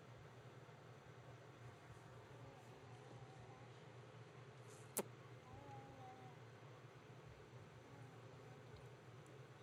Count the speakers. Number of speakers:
0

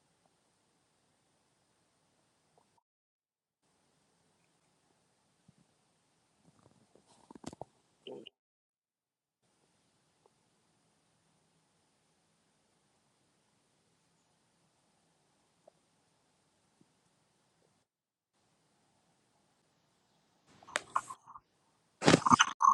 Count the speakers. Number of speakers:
0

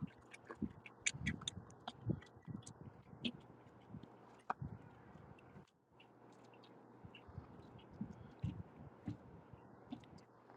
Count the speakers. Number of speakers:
0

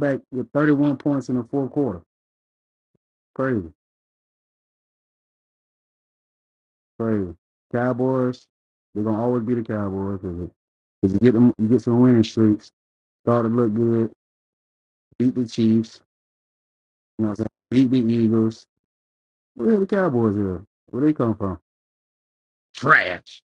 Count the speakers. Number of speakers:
1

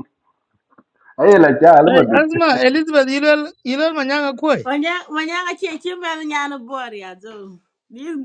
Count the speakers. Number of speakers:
3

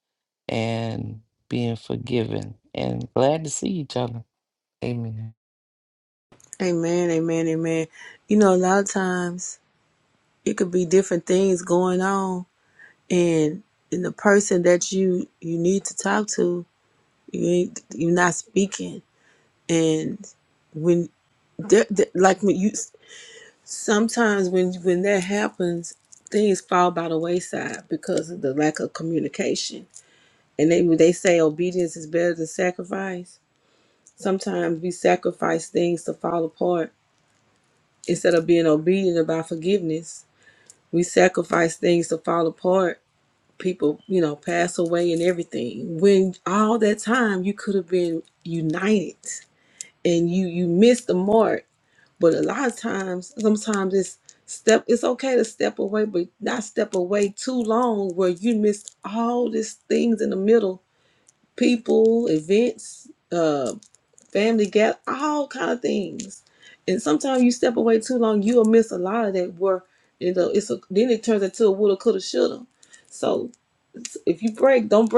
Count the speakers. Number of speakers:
2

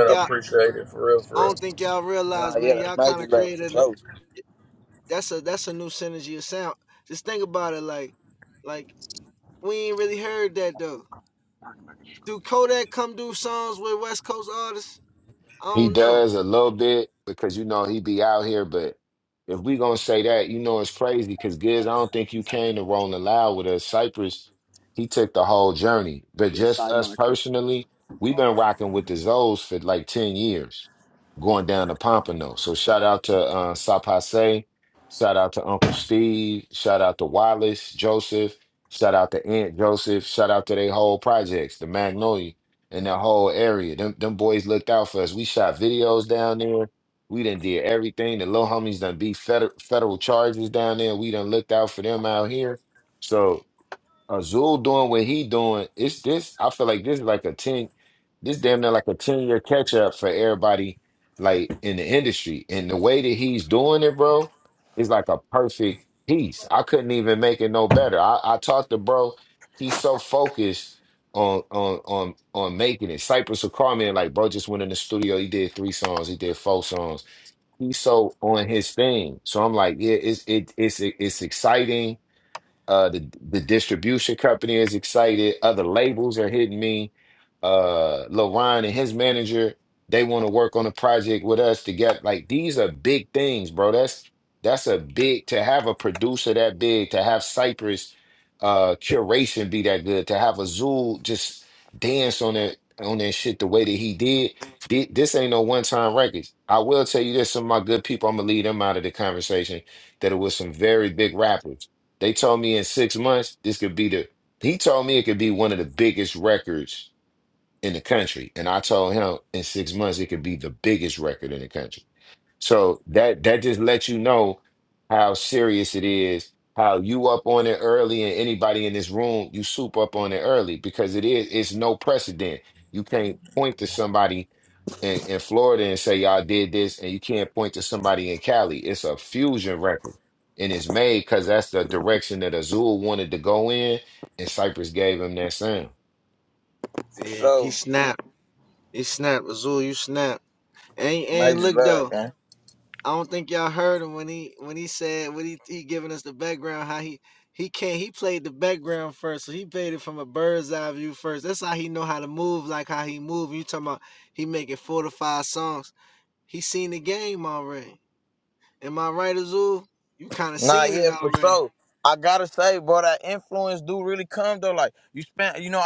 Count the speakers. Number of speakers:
4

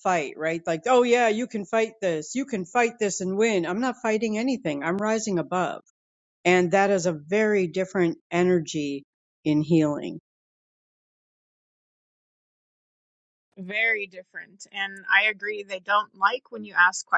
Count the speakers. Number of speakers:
2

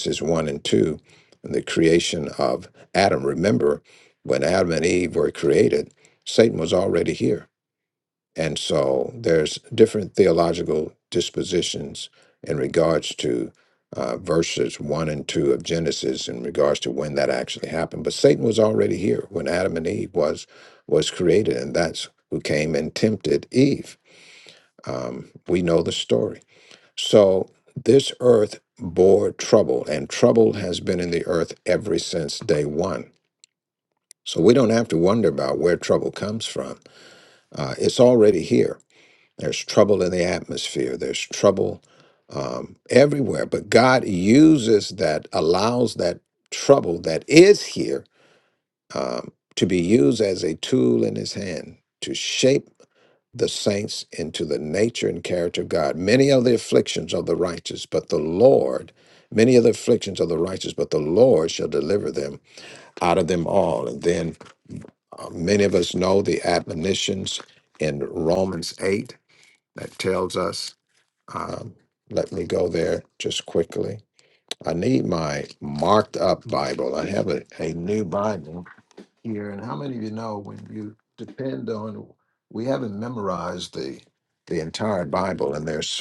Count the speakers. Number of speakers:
1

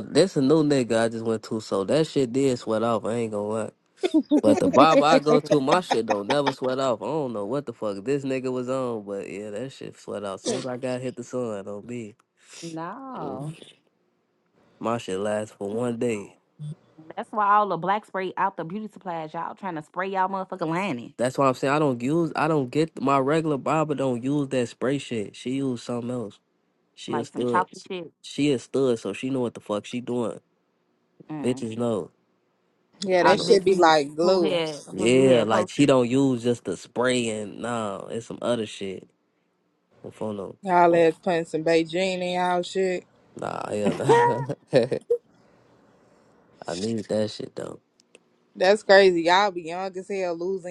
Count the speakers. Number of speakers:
3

